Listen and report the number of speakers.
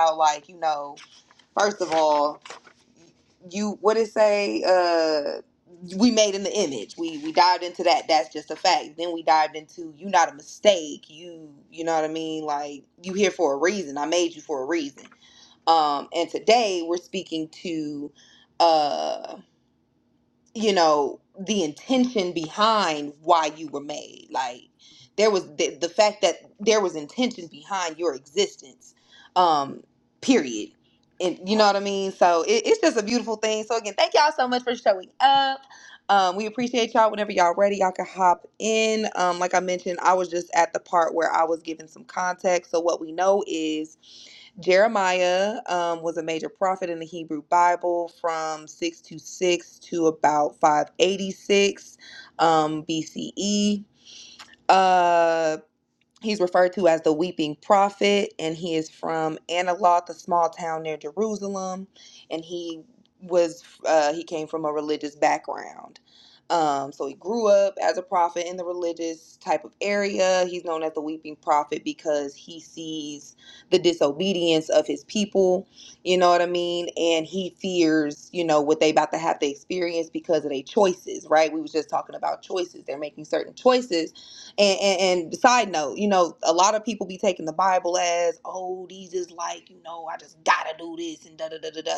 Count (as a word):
one